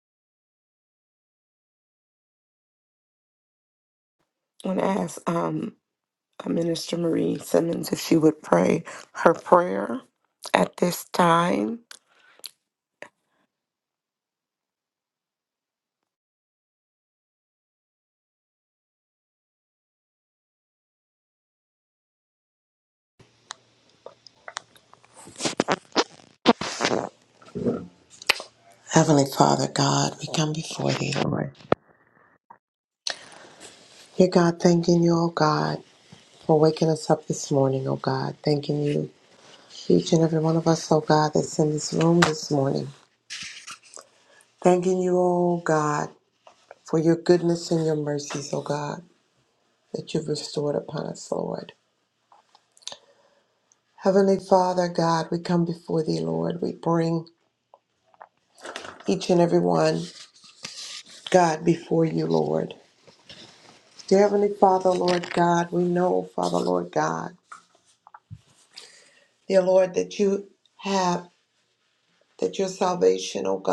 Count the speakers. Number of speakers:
2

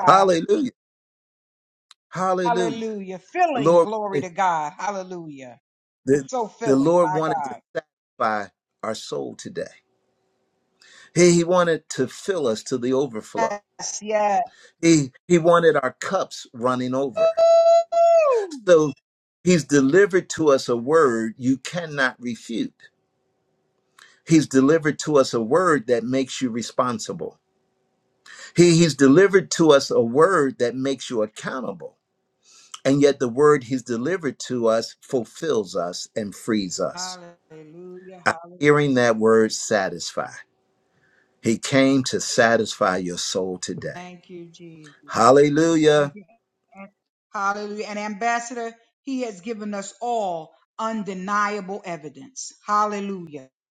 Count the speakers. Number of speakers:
2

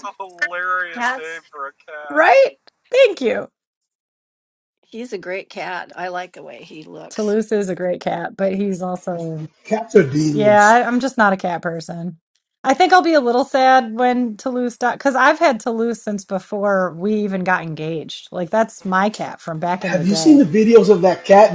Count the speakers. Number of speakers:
4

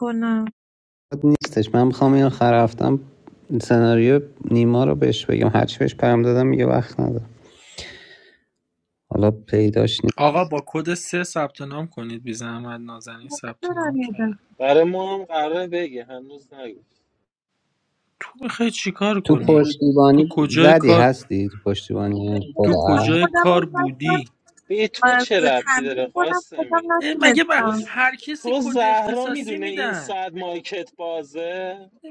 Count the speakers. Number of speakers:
4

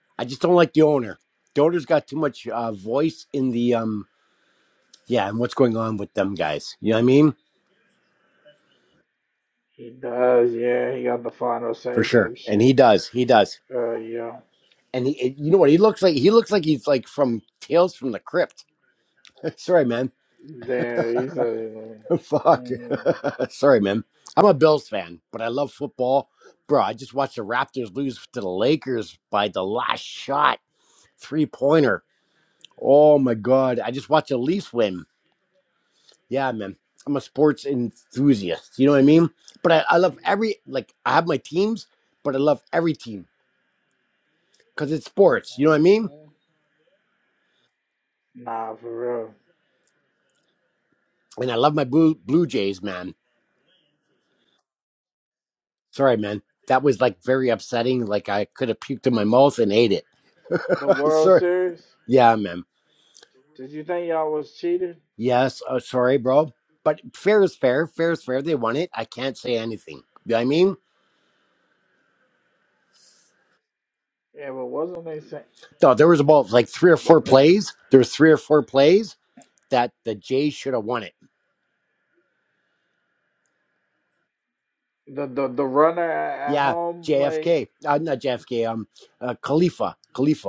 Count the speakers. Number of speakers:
2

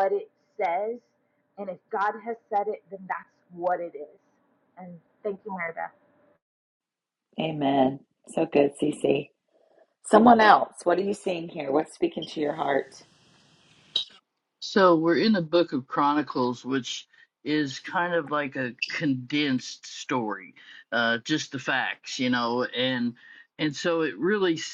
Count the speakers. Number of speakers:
3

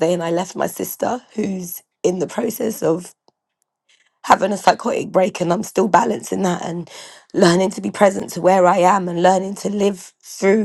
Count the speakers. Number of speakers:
1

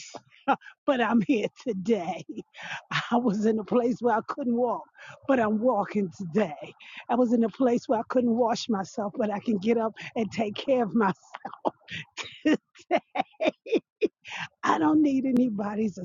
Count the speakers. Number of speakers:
1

